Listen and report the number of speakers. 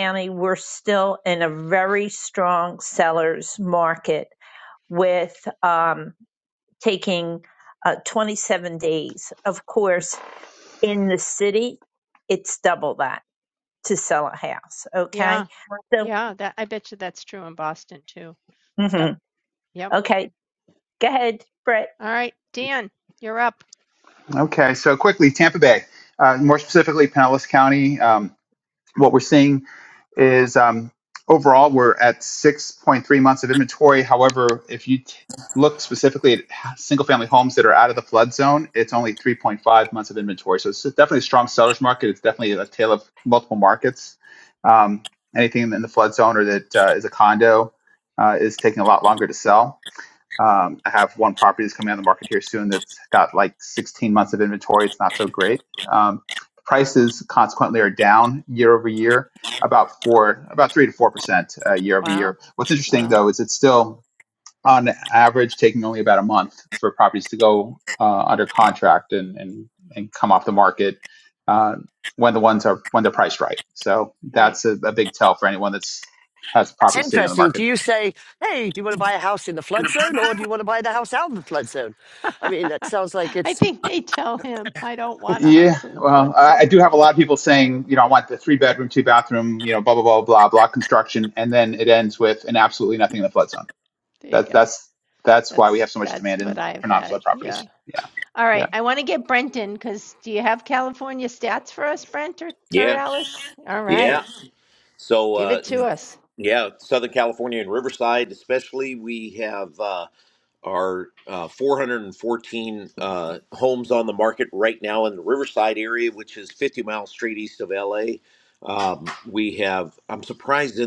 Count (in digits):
5